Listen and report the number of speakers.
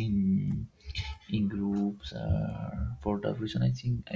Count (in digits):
1